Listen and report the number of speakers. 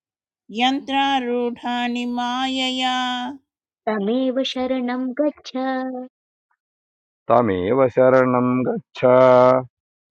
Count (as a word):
three